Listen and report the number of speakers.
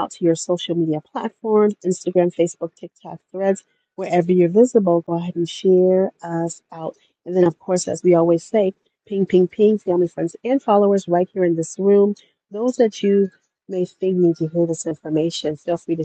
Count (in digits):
1